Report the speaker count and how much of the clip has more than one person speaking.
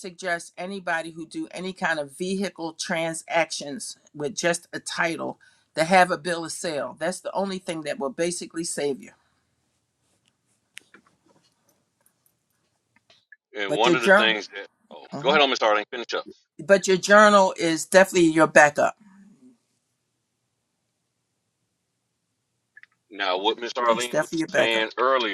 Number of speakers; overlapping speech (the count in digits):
2, about 7%